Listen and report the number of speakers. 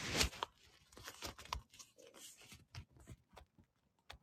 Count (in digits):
0